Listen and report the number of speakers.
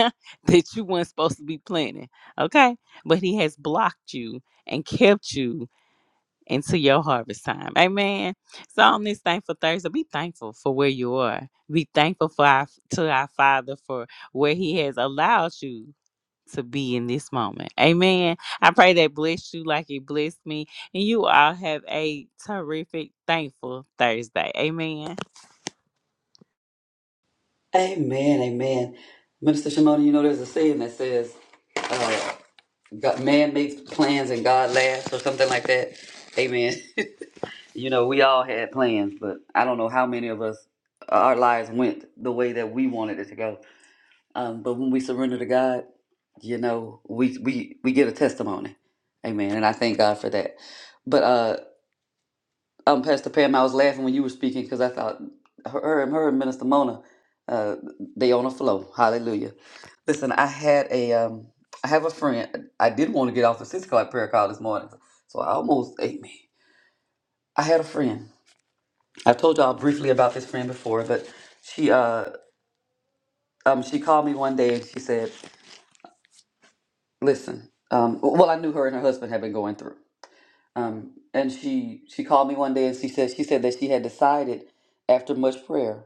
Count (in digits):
2